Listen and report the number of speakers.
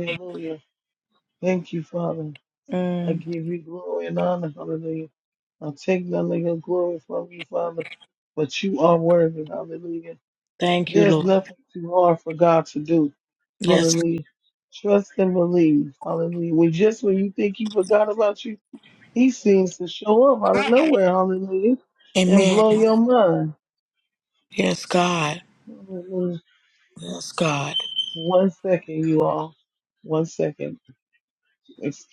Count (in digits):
2